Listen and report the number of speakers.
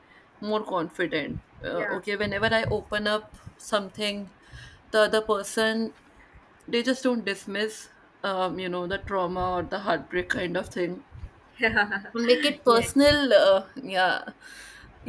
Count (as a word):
two